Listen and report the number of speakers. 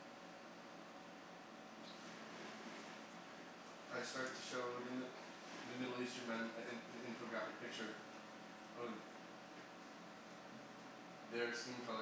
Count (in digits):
1